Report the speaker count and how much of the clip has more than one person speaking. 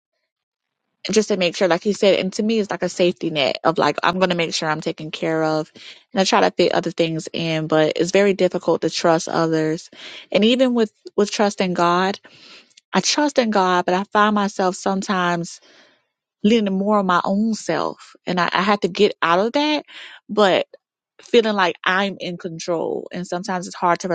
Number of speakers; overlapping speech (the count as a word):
one, no overlap